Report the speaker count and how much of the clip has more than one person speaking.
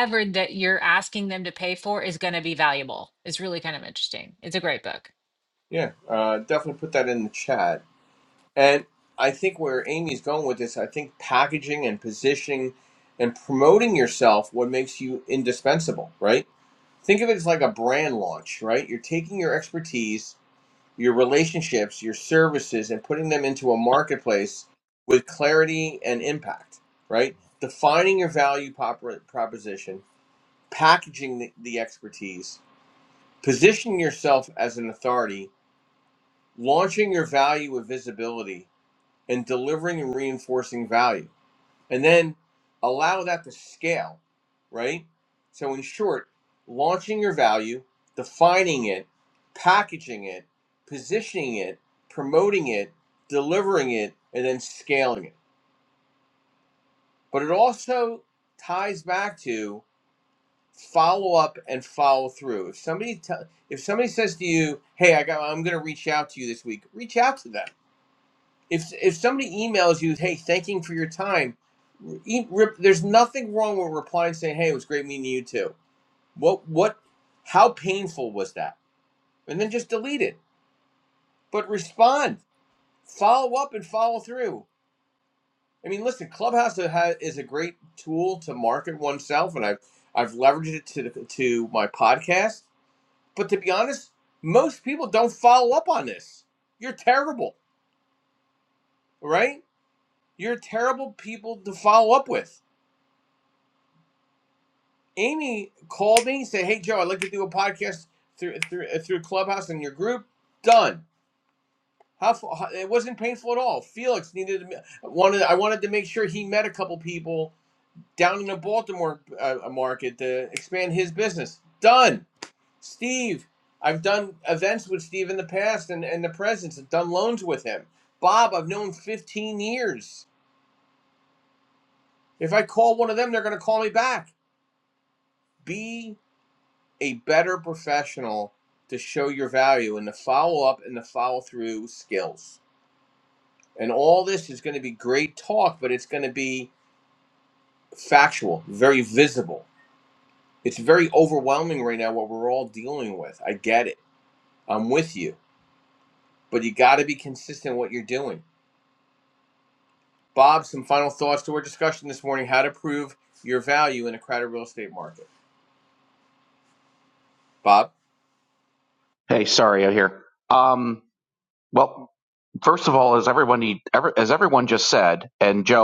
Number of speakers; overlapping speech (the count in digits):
3, no overlap